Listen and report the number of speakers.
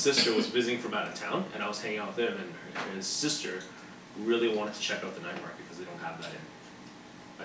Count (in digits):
1